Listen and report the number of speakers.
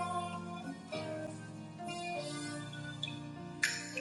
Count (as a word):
zero